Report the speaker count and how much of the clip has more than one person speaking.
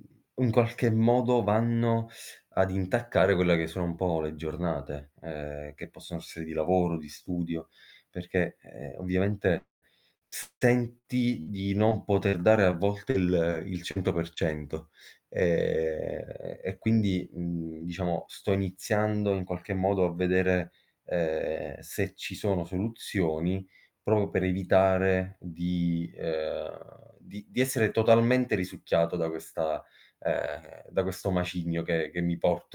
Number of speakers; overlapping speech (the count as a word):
one, no overlap